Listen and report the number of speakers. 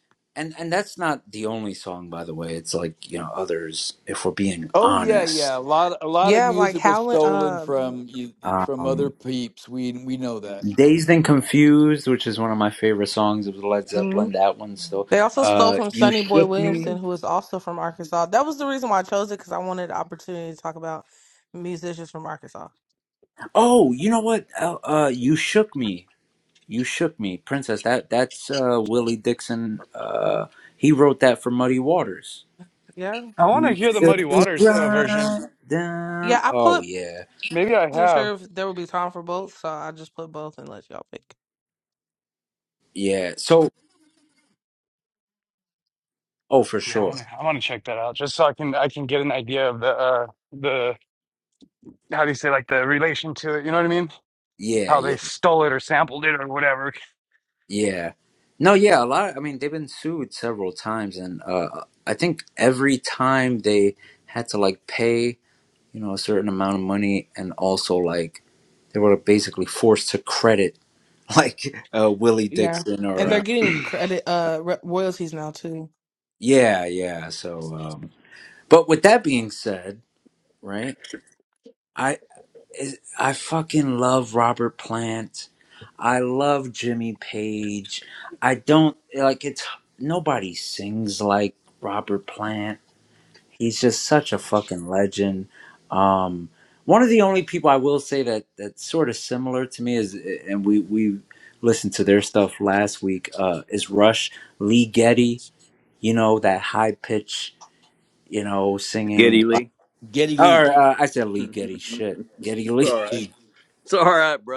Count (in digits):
5